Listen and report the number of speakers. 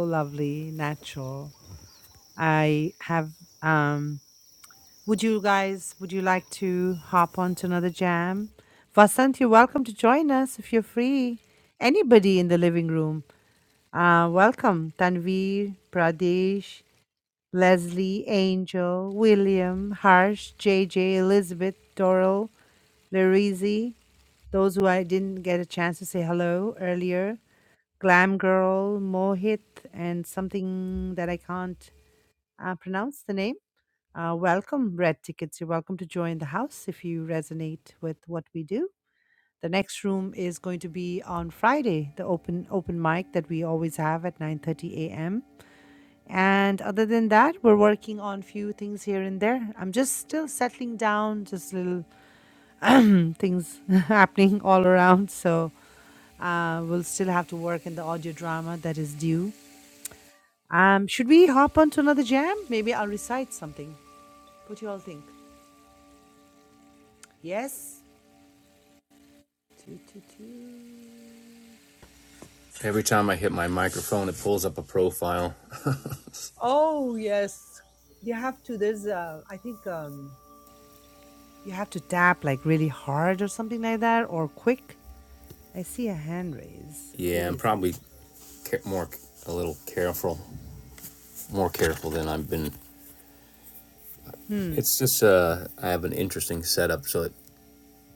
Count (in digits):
2